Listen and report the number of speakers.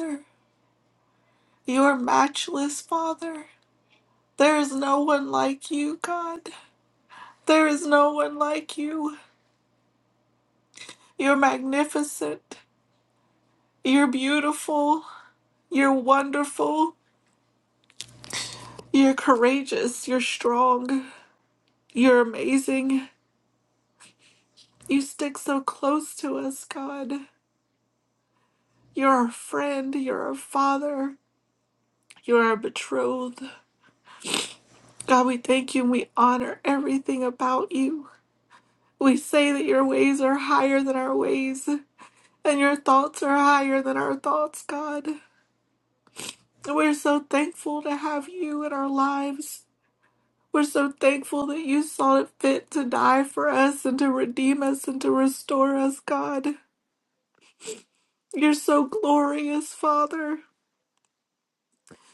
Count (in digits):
1